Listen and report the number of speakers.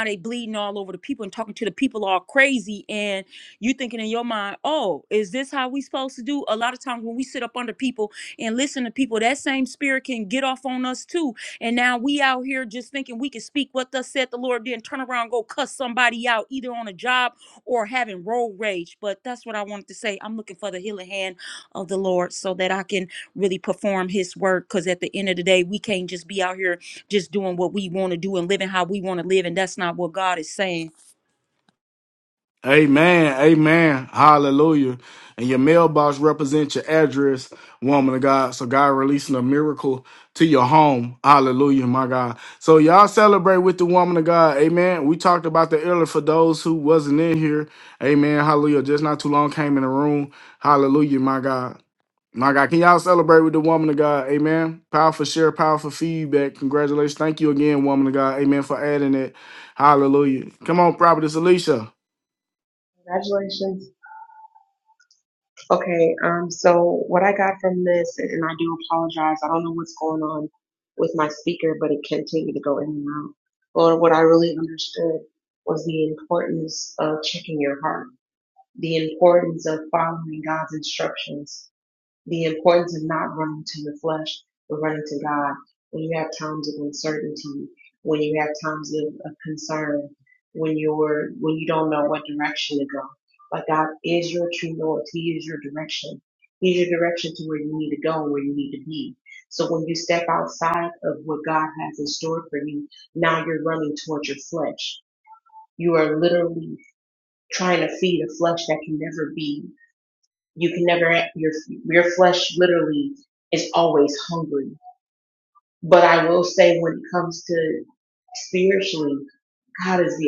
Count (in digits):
3